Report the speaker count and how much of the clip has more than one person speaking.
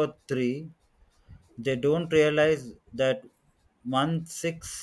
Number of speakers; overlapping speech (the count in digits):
1, no overlap